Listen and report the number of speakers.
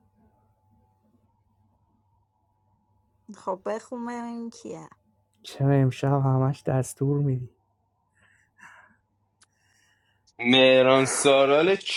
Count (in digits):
3